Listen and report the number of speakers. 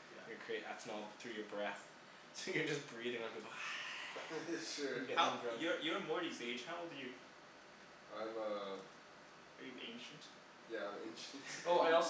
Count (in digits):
3